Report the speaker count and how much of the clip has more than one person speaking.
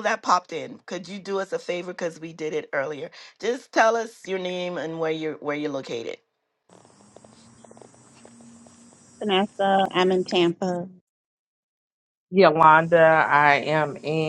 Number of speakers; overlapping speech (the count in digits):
3, no overlap